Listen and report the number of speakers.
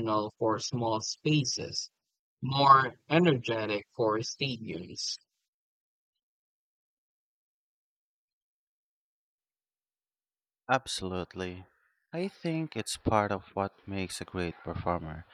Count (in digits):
2